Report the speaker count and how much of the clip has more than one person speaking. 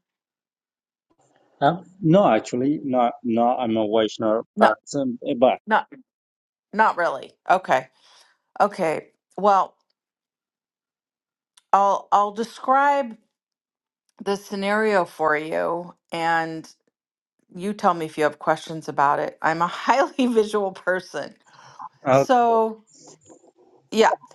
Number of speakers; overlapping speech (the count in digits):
2, about 1%